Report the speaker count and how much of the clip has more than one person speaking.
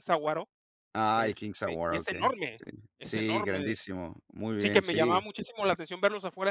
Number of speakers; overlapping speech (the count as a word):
two, about 33%